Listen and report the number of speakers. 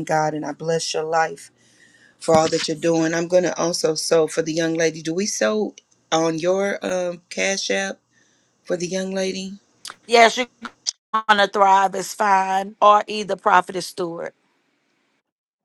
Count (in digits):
2